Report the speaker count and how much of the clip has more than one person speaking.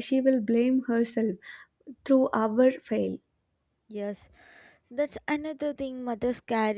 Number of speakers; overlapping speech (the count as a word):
two, no overlap